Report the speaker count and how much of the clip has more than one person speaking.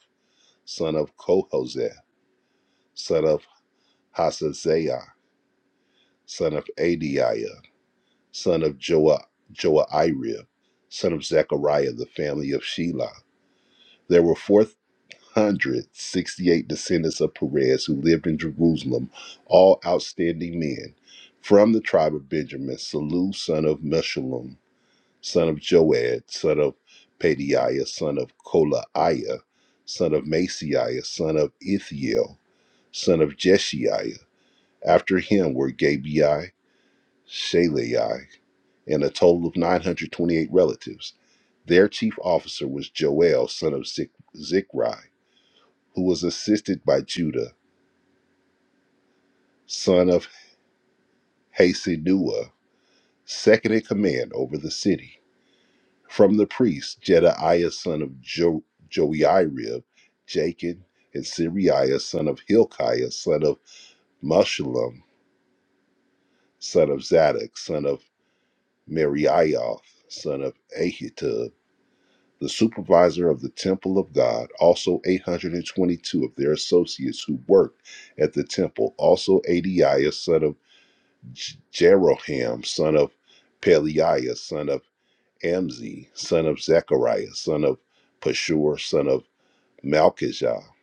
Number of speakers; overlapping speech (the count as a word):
one, no overlap